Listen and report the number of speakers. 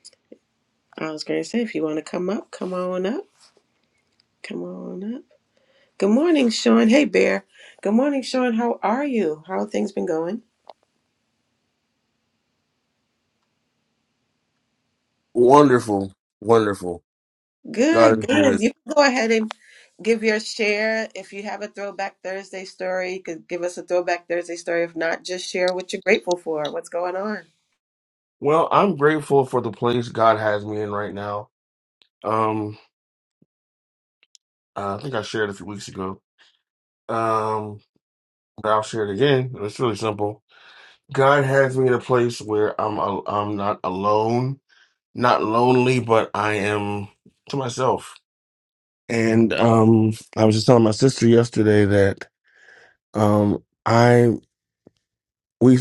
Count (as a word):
two